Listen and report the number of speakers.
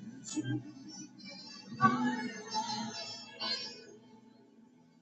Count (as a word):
zero